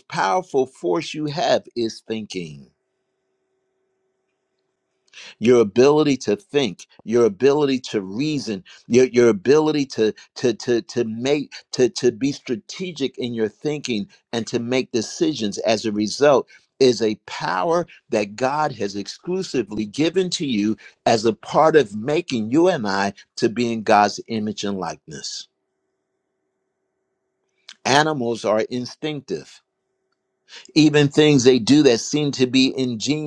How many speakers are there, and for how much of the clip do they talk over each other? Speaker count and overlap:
1, no overlap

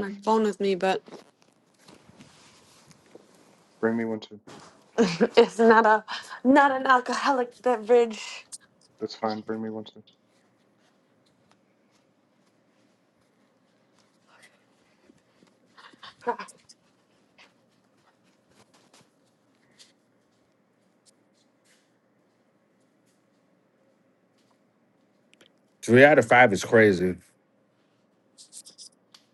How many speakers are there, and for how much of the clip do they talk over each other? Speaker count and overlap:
3, under 1%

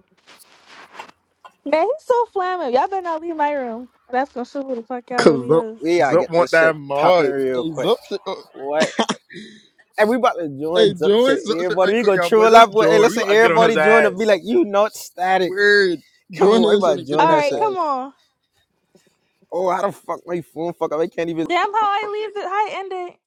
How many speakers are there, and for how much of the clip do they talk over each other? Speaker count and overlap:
3, about 31%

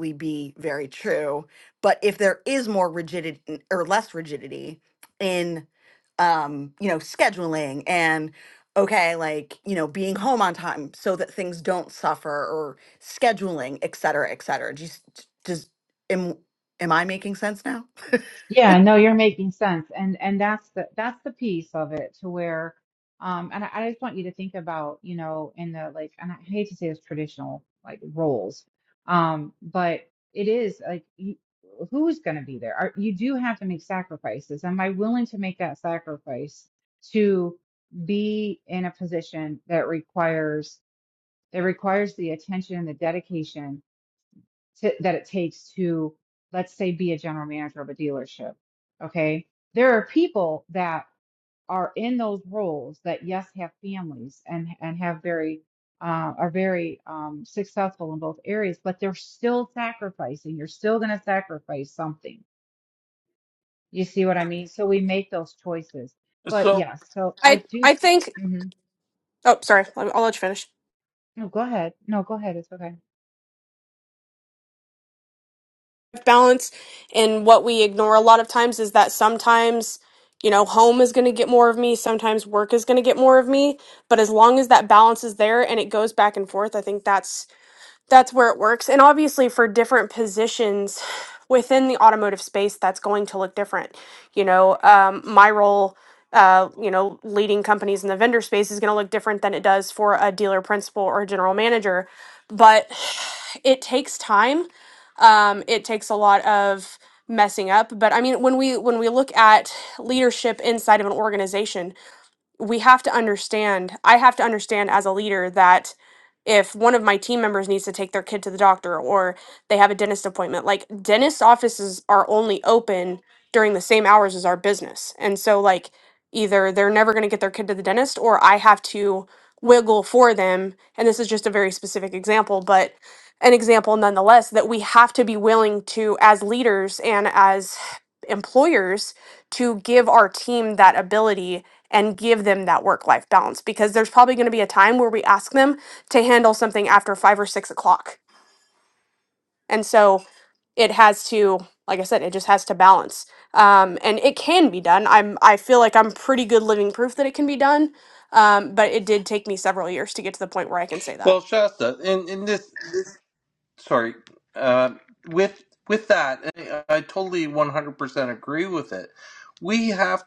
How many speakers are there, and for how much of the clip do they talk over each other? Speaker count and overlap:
4, about 1%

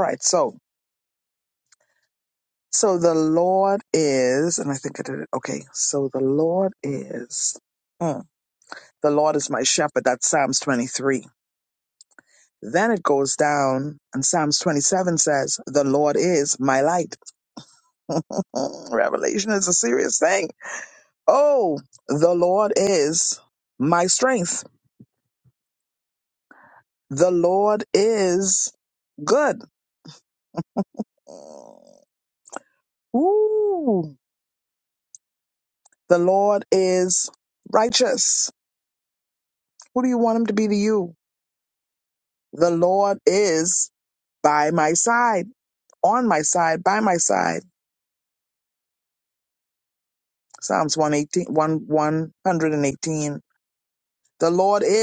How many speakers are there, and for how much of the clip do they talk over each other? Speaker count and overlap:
1, no overlap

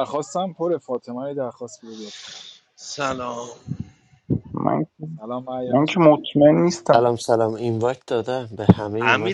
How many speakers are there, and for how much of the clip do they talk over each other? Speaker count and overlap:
4, about 8%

